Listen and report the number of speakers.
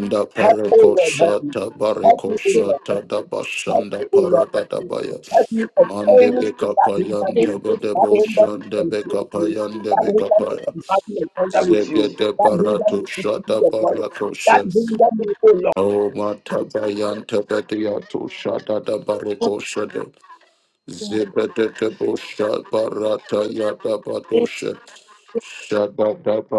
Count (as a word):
two